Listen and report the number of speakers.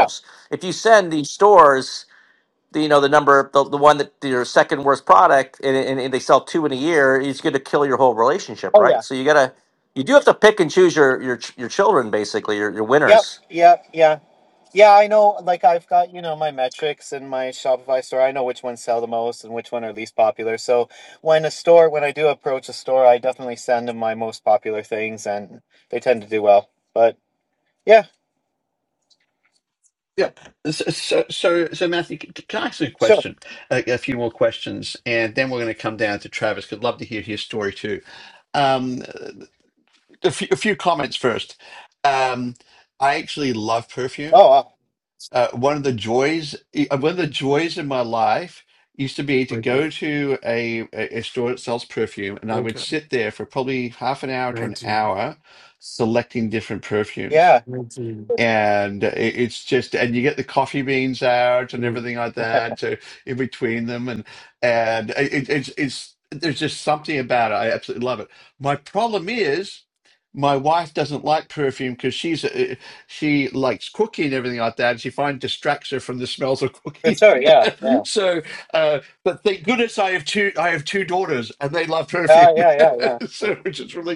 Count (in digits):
4